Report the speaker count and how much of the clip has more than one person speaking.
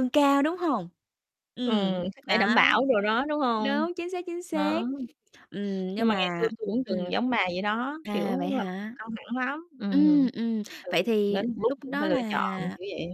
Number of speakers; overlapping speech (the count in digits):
2, about 39%